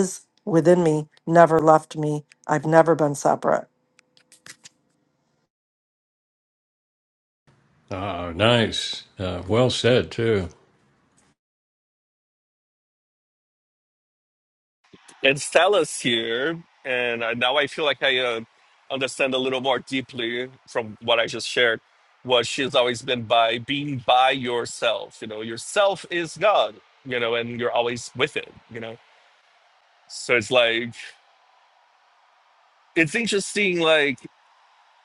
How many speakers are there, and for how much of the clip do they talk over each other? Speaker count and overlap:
three, no overlap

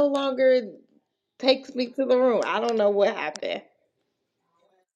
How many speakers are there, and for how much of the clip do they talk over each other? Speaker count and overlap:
one, no overlap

